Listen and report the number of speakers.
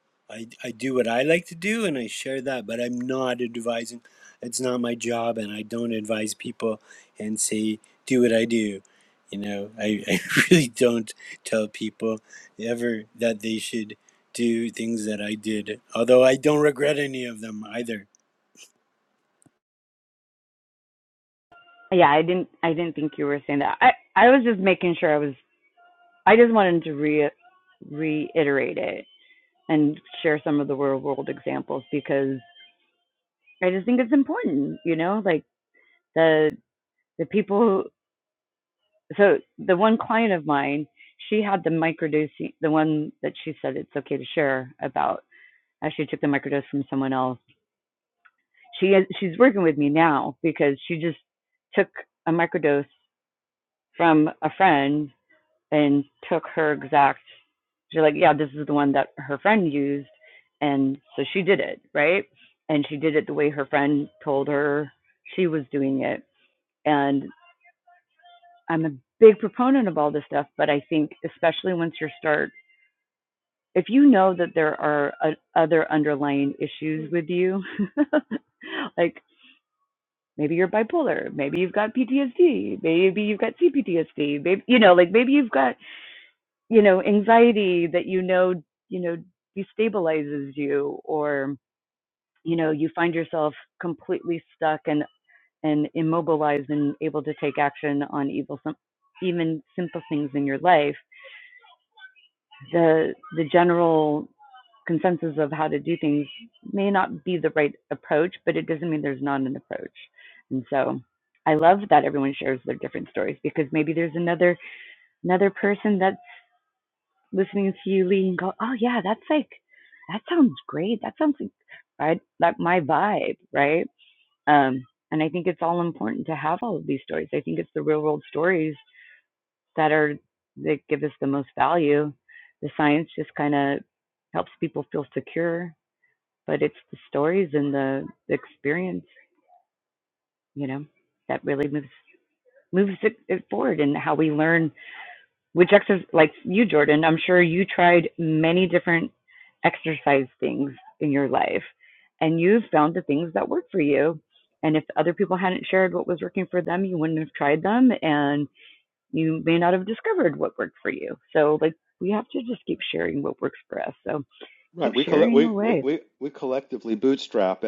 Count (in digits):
3